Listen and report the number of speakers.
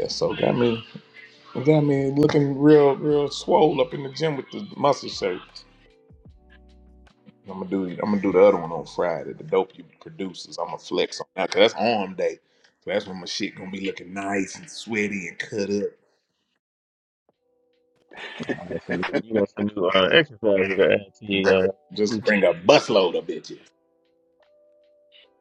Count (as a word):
two